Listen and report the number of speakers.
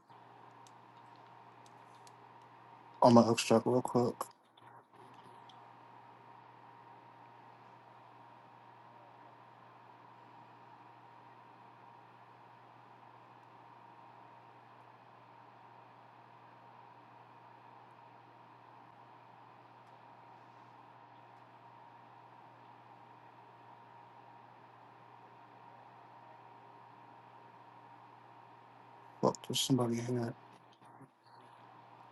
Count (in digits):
1